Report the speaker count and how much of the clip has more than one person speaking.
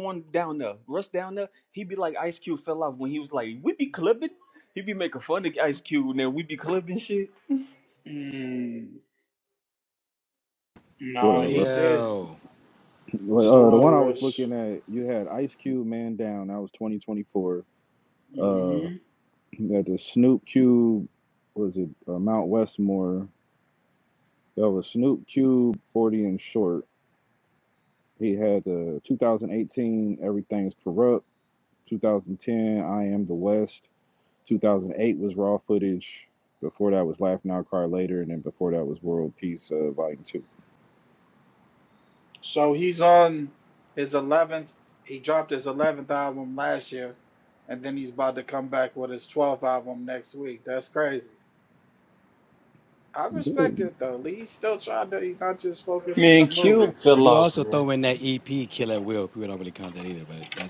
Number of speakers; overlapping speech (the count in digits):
4, about 7%